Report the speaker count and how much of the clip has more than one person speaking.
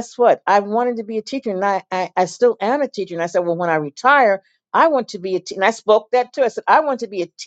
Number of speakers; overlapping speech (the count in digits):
1, no overlap